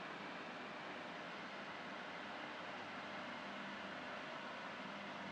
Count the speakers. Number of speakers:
0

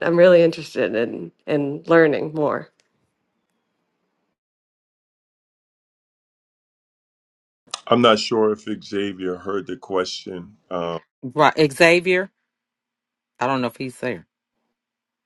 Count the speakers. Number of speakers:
3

